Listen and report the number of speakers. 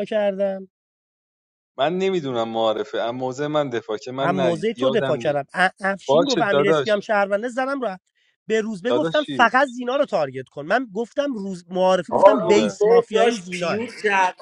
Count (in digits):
3